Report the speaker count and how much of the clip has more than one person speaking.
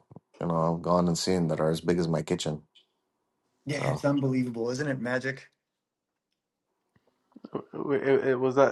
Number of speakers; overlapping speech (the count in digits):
3, about 2%